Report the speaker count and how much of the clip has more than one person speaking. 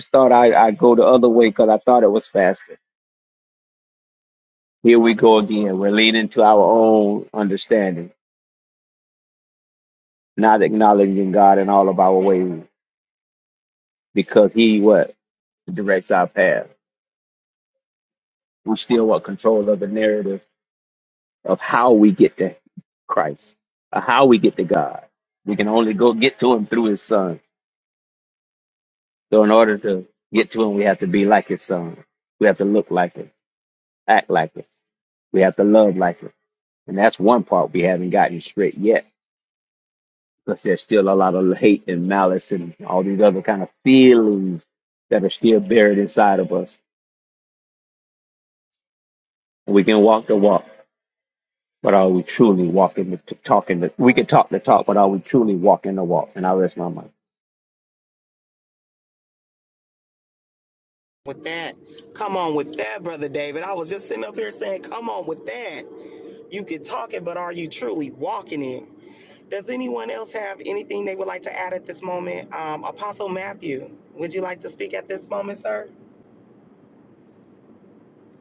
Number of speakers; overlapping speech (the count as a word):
two, no overlap